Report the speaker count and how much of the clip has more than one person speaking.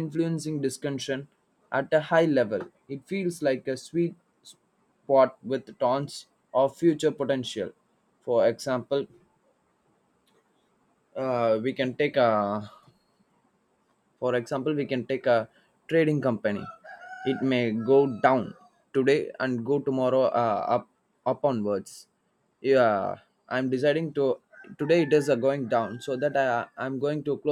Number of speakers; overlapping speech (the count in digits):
1, no overlap